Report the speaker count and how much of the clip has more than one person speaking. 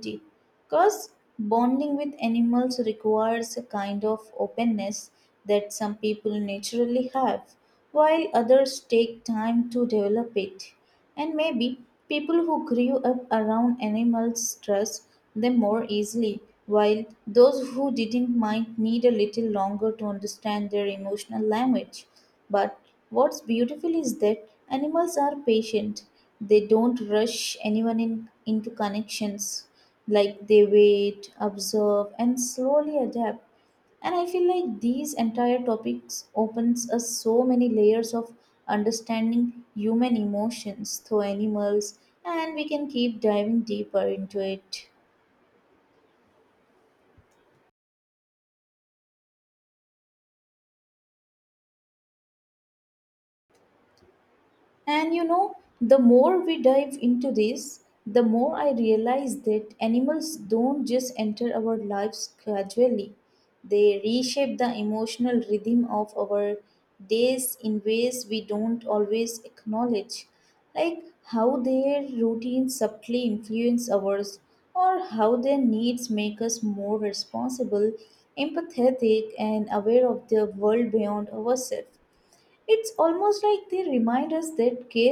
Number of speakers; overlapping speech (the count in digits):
1, no overlap